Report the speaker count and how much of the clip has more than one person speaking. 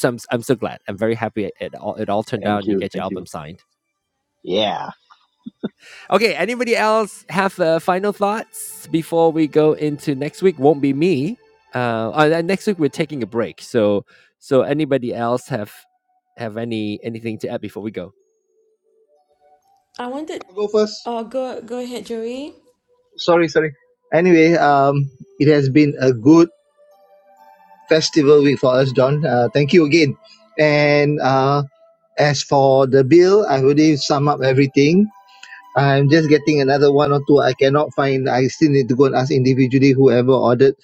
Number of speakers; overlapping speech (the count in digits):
4, about 2%